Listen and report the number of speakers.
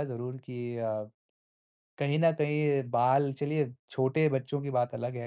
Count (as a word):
one